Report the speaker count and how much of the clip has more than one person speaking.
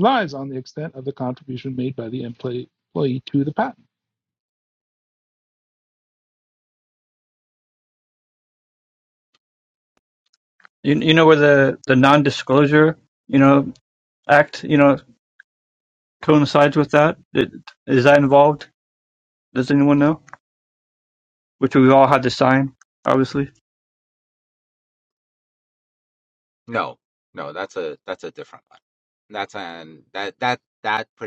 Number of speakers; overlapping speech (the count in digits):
3, no overlap